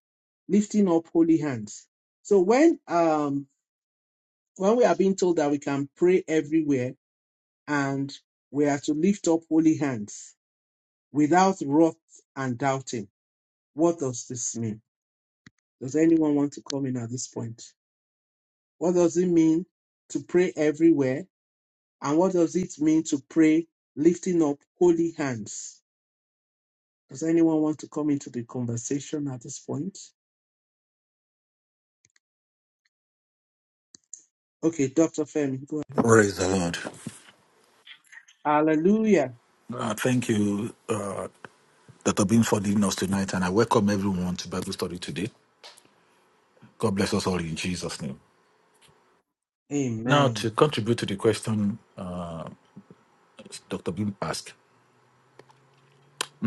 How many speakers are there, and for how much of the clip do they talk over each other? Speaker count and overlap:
2, about 1%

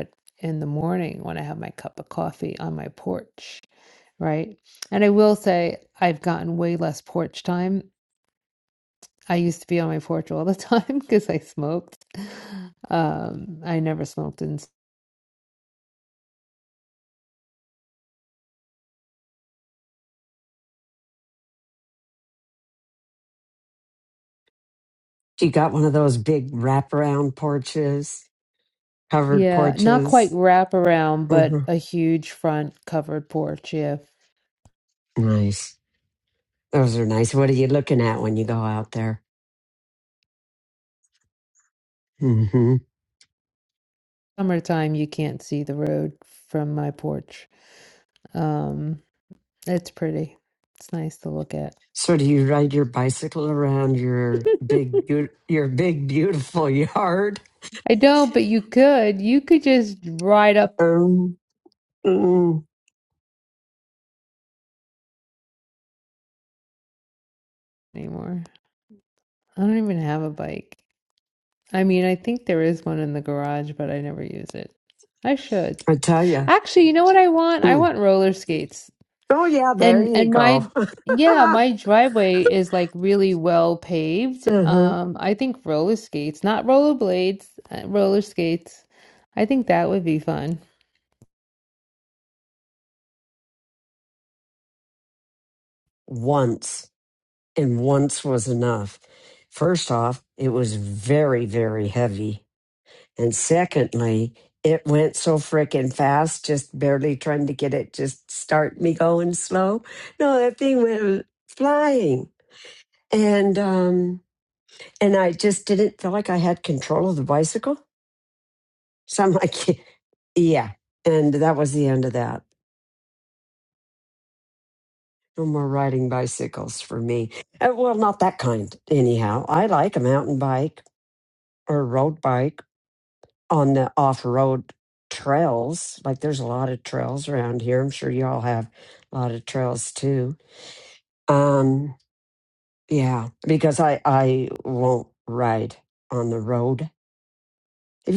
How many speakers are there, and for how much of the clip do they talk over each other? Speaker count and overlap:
2, about 2%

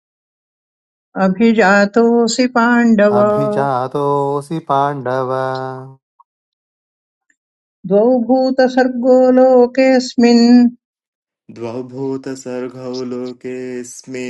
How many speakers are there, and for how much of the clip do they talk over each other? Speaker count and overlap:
3, about 1%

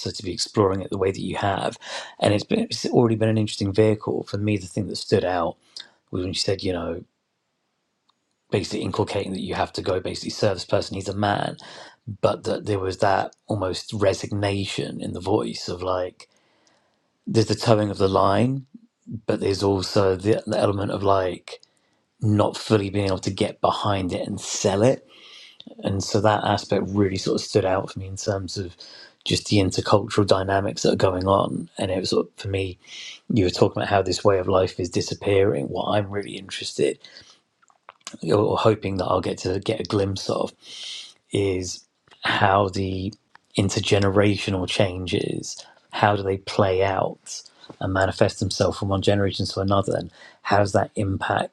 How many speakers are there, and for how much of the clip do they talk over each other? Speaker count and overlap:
1, no overlap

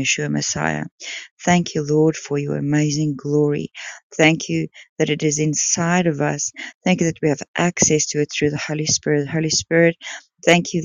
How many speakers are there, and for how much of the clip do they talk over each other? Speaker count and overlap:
1, no overlap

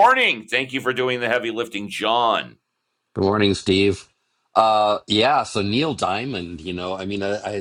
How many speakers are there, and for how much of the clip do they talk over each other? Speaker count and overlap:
2, no overlap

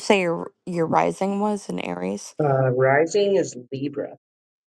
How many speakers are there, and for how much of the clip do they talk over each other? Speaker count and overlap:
2, no overlap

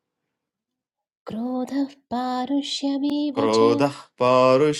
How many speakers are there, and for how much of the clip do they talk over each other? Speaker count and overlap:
2, about 3%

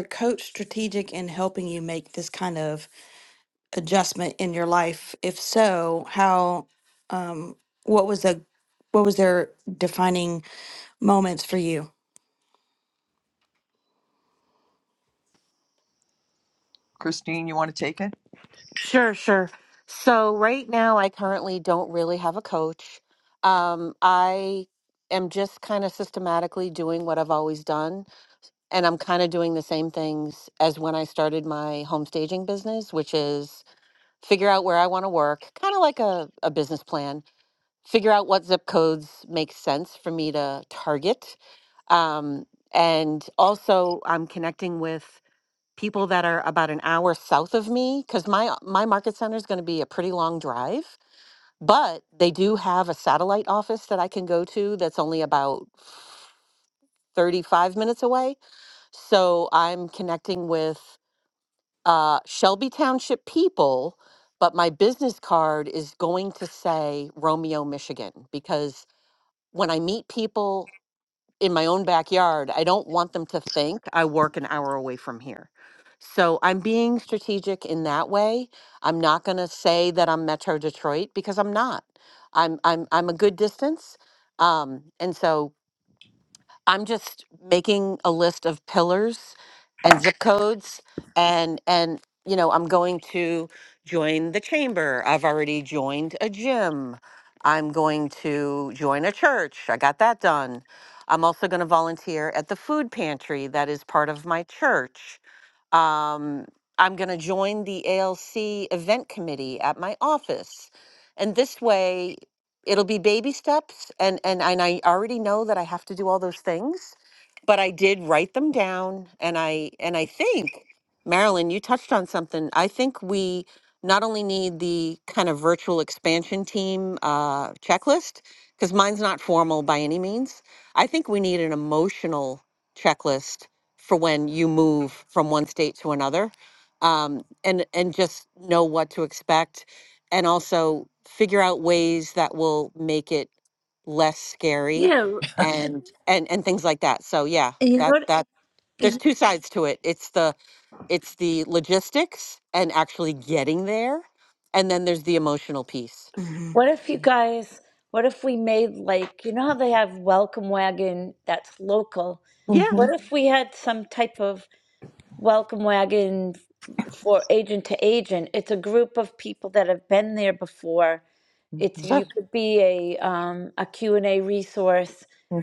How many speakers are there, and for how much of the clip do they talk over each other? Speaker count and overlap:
4, about 1%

